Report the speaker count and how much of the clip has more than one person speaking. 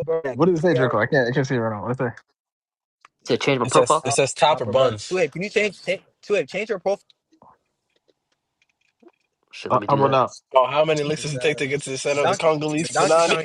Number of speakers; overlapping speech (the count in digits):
4, about 27%